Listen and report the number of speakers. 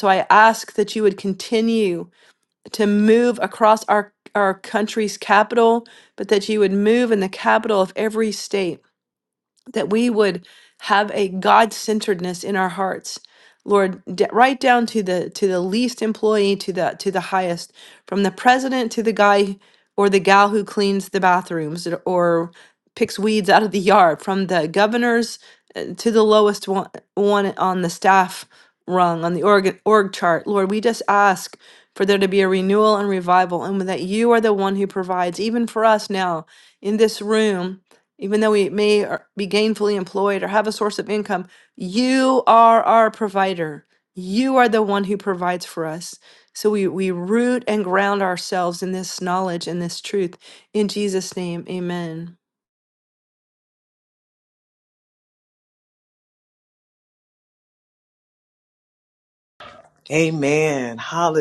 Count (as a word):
two